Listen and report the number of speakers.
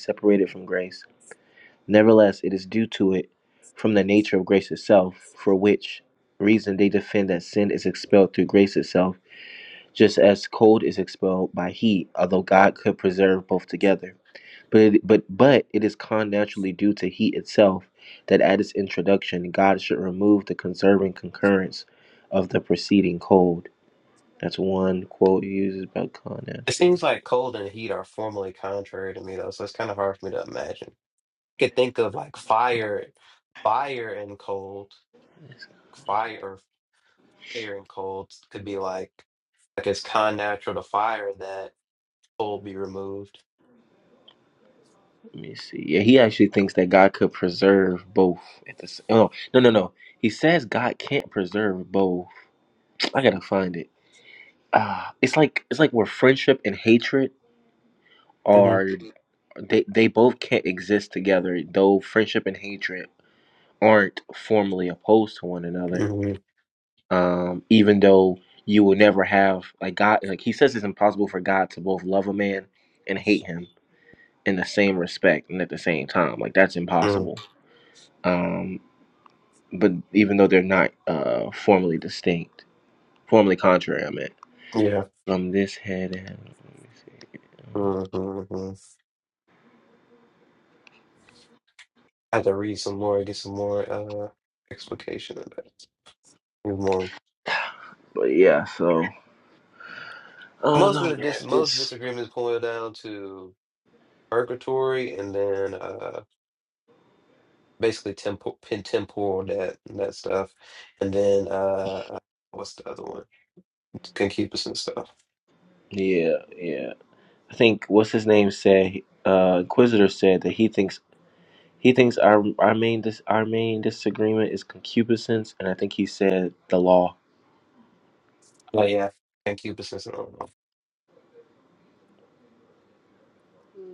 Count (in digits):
2